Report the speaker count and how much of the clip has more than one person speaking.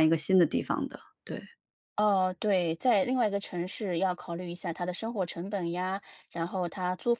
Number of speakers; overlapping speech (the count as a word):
two, no overlap